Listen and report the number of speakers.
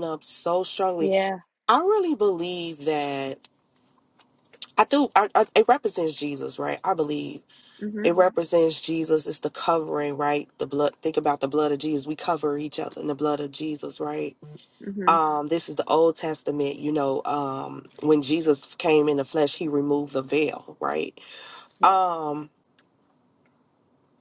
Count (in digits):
2